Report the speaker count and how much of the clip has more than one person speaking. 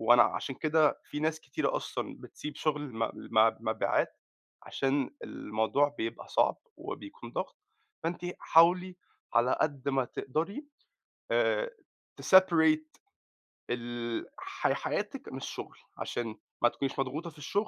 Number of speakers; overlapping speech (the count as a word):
one, no overlap